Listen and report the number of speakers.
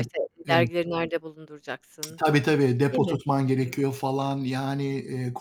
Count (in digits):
2